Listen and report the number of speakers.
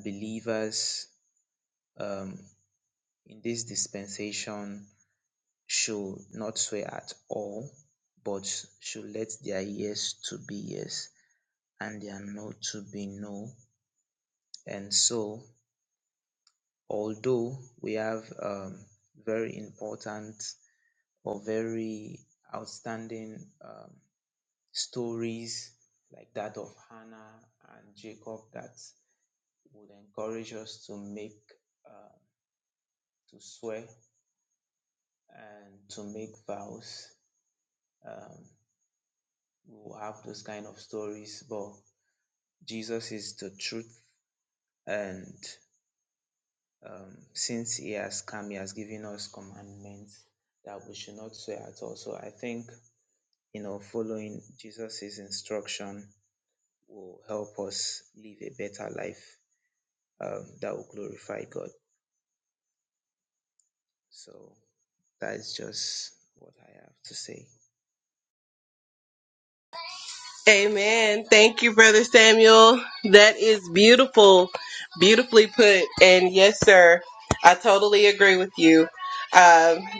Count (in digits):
2